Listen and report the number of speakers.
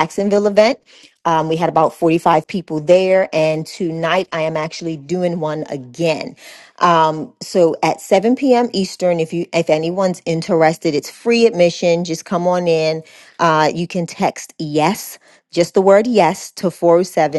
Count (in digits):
1